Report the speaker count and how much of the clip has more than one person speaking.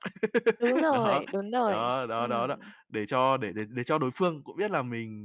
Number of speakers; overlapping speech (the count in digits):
2, about 17%